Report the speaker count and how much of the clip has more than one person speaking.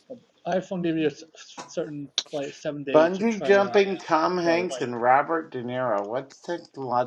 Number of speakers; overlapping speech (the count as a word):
two, about 15%